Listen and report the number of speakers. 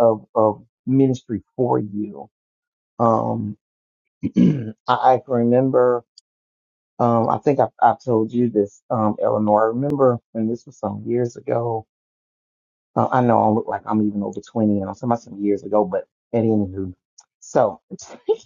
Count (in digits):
1